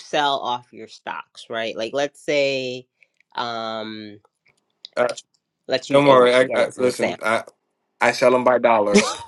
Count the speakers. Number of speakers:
2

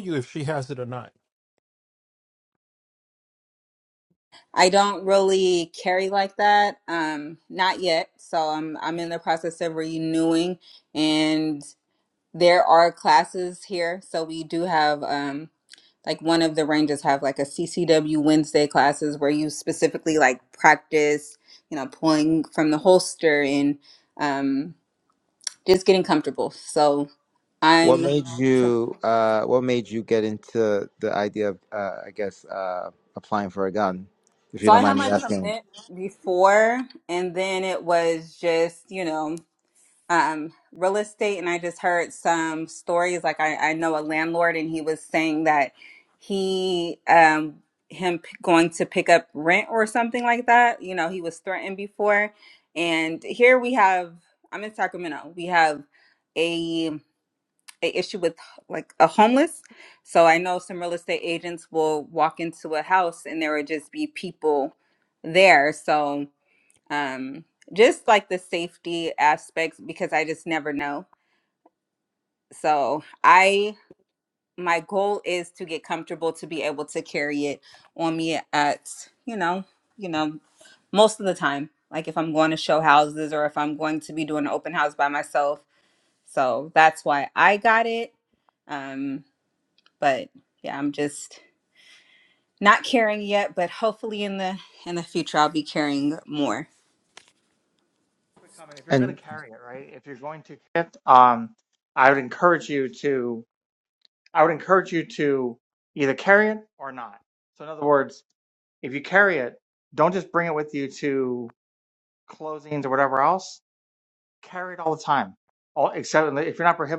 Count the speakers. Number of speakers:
4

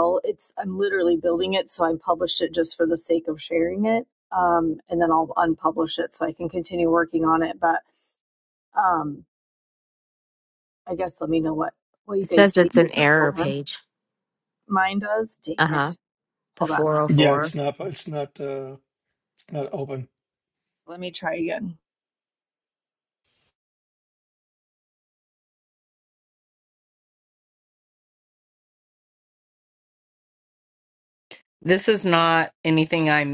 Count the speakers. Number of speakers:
4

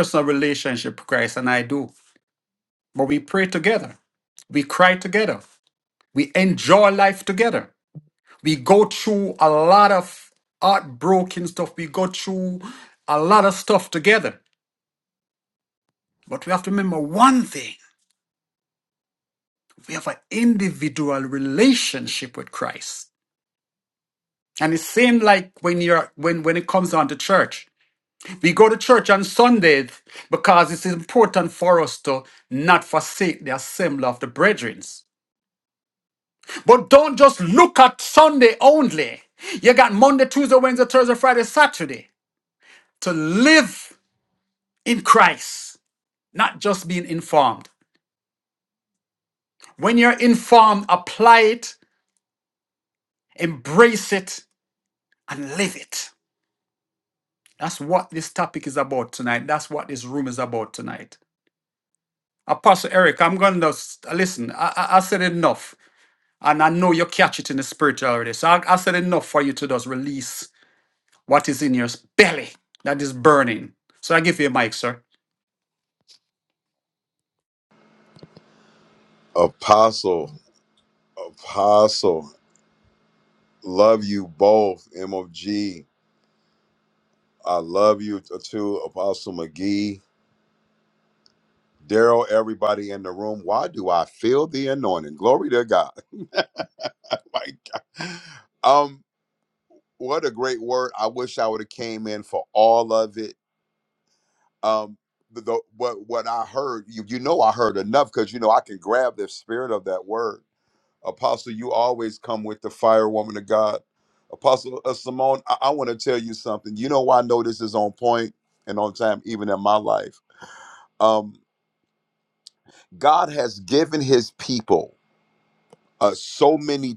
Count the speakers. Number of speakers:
2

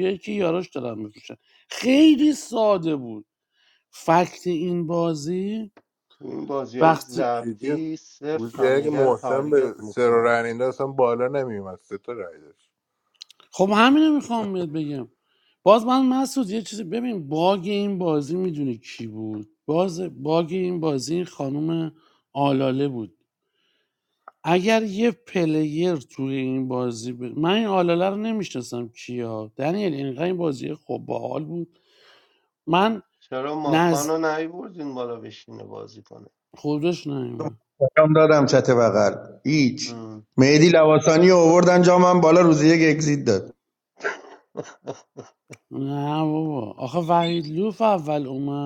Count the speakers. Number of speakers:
4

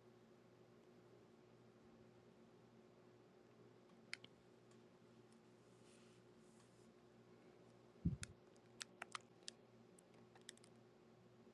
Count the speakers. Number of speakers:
0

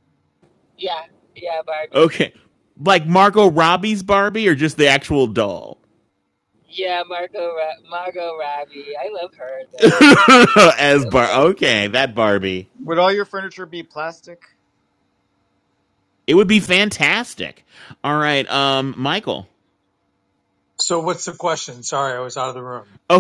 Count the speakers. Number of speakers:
4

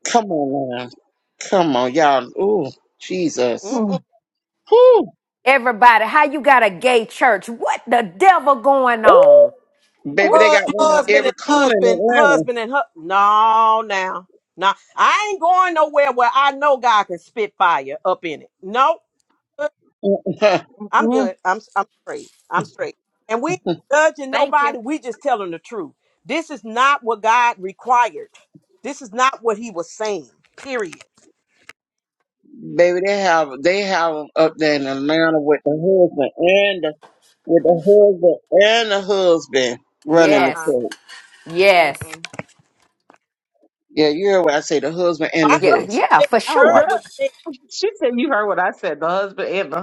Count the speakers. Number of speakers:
4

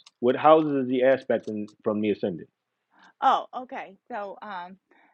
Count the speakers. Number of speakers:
2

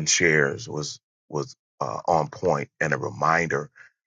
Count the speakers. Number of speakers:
1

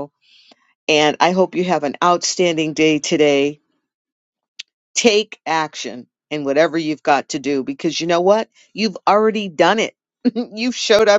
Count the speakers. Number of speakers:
1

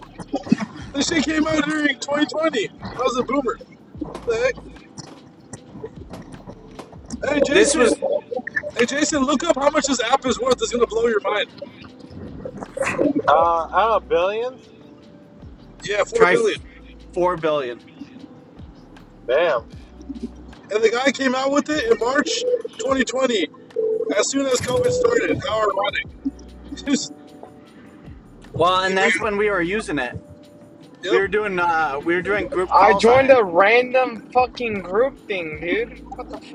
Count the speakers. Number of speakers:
4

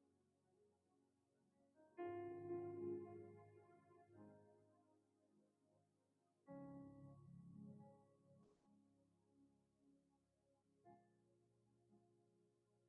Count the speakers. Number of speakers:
0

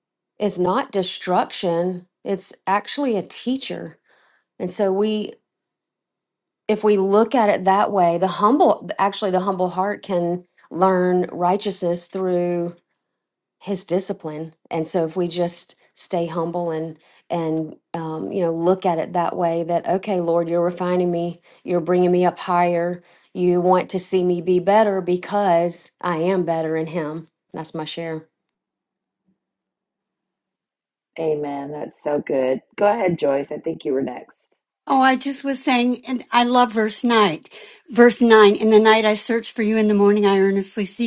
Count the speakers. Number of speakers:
3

